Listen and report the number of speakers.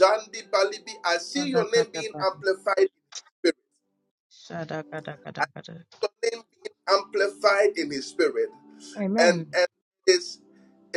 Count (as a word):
two